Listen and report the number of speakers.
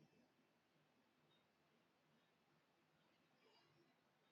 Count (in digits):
0